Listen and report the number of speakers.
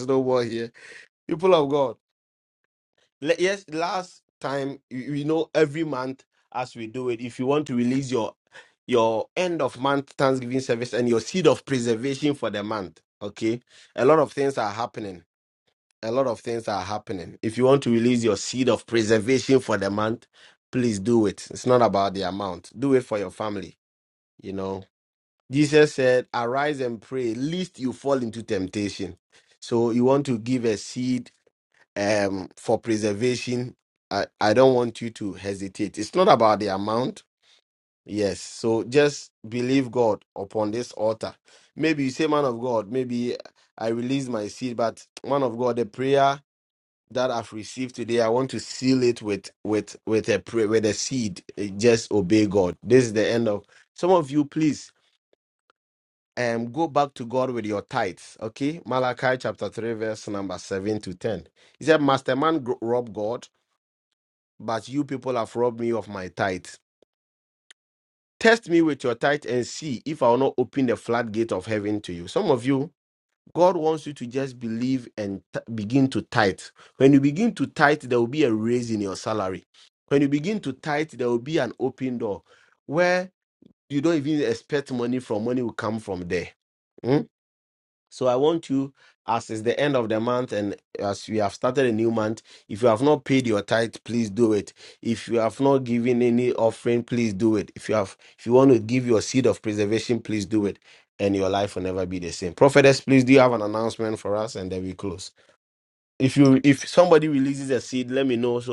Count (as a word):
one